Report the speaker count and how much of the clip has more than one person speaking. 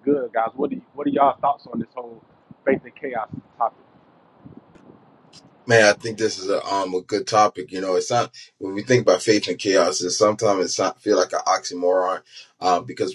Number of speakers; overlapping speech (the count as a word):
two, no overlap